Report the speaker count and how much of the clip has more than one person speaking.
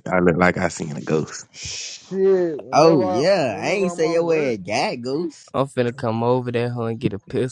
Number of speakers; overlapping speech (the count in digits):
4, about 24%